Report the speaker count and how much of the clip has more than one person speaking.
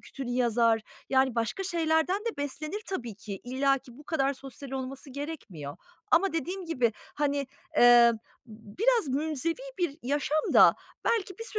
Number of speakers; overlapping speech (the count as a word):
one, no overlap